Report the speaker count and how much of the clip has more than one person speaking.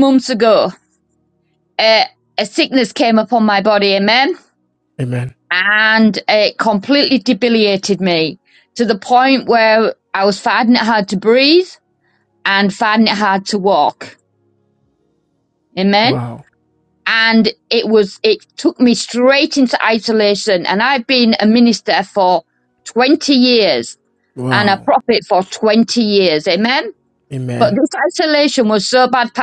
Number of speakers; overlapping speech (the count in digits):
2, about 2%